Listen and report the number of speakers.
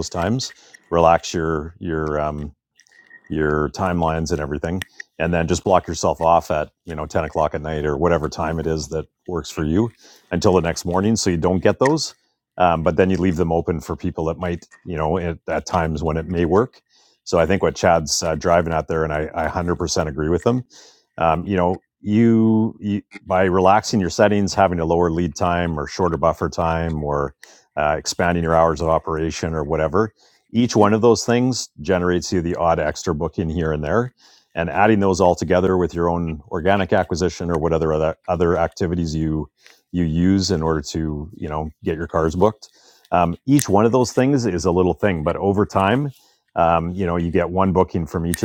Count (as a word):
one